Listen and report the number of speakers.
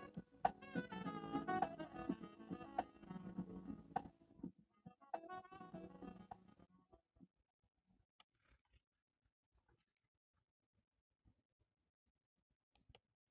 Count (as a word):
zero